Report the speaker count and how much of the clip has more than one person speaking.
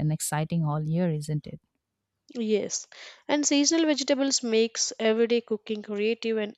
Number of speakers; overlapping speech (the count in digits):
2, no overlap